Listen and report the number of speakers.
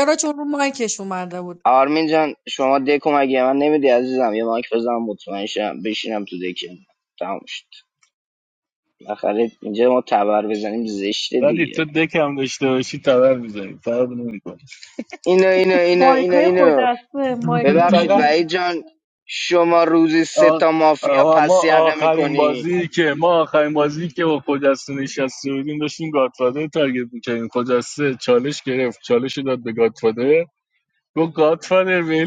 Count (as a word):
three